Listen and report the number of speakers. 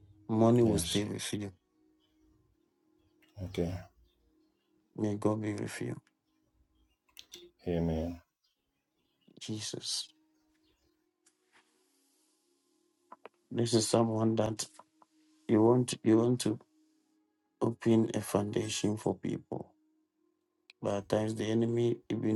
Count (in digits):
2